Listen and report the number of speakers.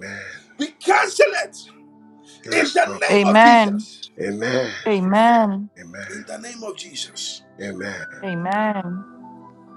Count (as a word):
three